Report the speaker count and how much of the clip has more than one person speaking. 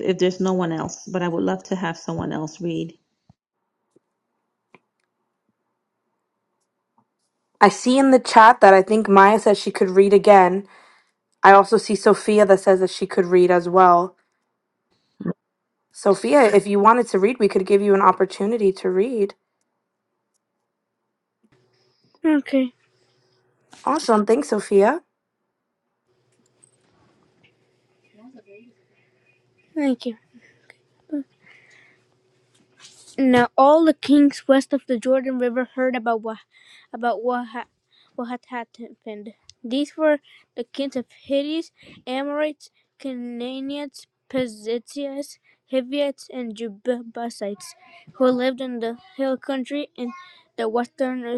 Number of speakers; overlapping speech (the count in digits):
3, no overlap